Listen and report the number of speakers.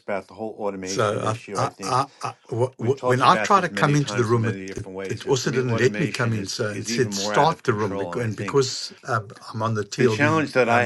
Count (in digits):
2